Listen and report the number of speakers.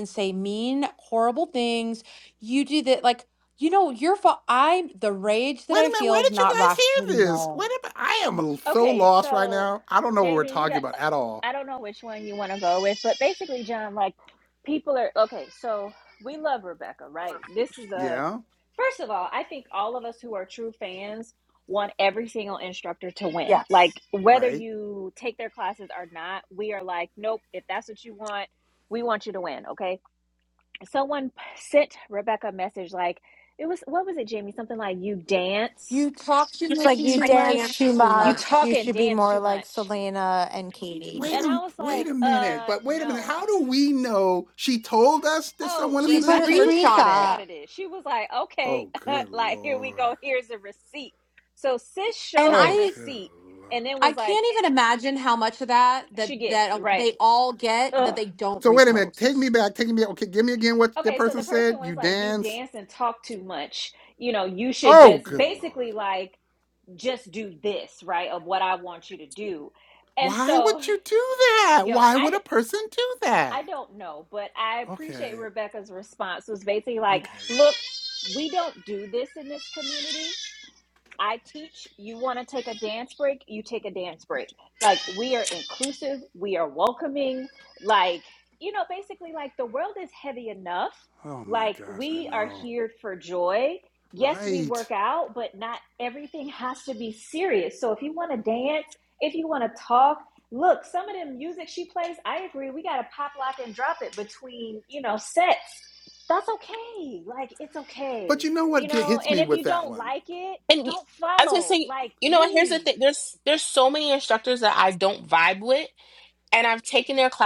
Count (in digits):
5